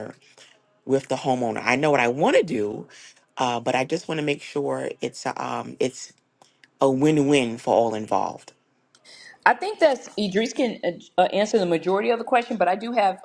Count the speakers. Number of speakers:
2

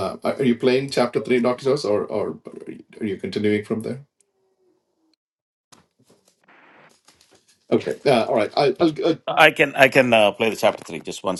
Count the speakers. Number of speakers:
2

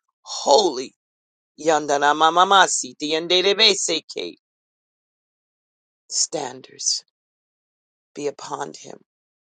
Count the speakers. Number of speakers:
1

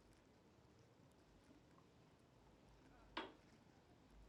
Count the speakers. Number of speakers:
0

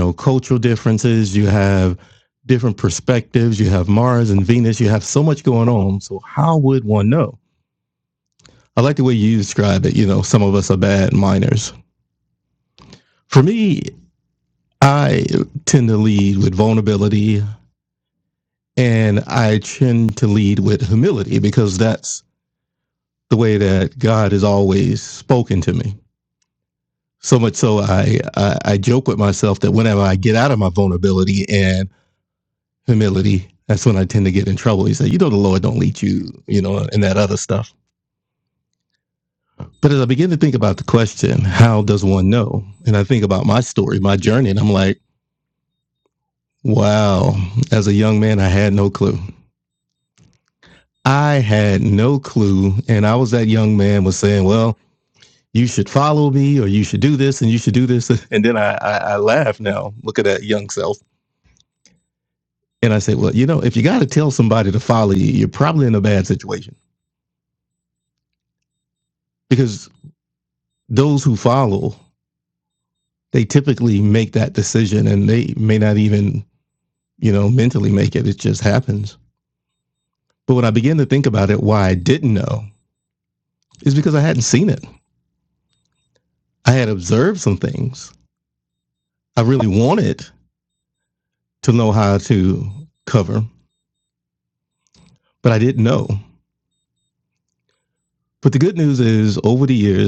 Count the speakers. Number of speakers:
1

